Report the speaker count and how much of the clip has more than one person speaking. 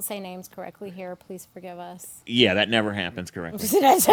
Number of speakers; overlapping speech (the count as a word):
two, about 4%